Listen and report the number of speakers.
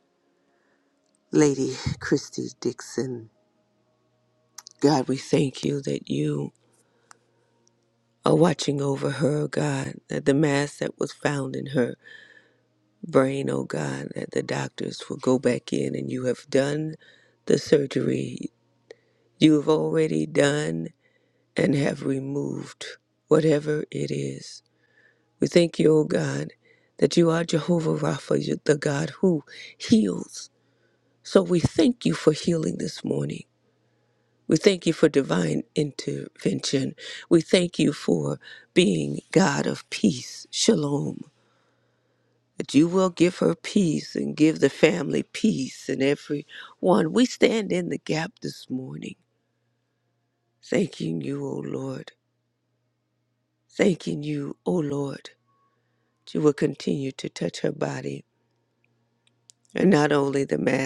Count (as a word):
one